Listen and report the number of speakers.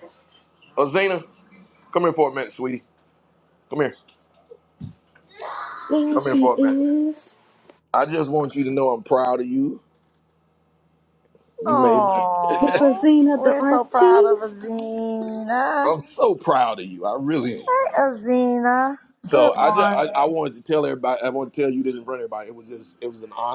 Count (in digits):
3